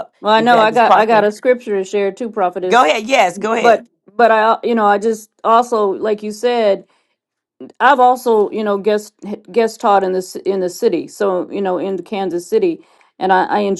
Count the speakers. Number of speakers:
2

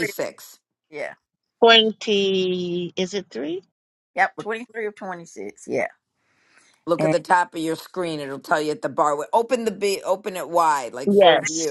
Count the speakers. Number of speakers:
3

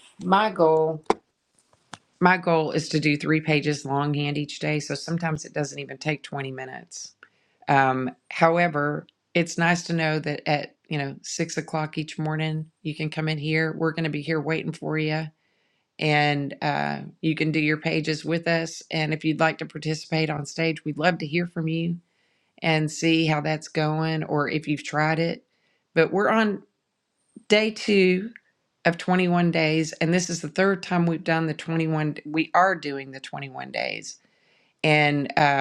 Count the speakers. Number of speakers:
1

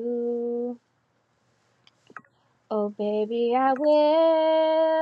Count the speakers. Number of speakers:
1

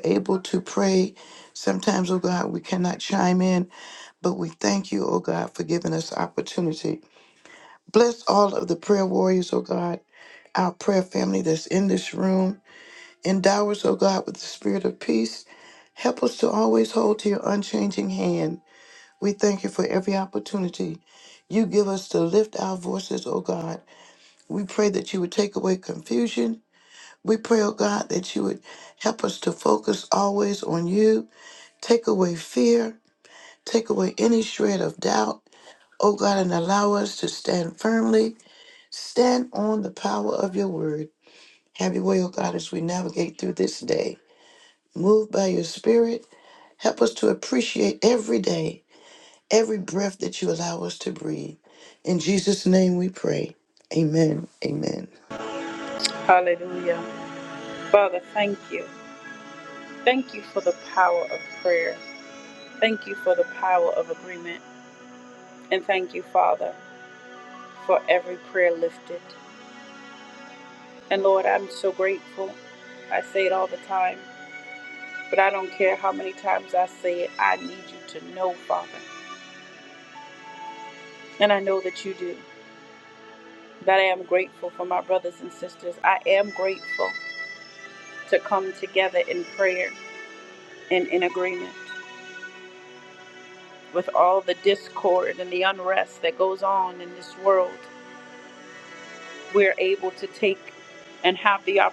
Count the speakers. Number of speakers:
2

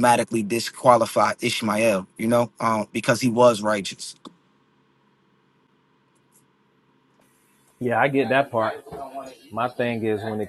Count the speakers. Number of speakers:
2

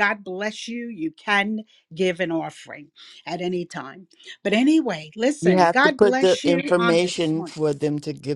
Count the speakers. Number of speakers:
2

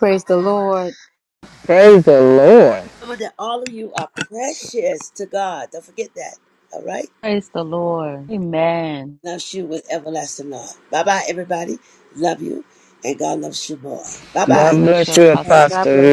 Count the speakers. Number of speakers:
4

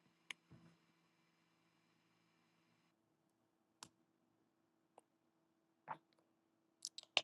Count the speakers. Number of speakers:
0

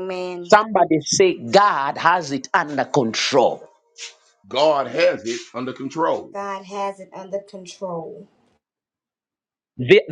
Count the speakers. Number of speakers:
3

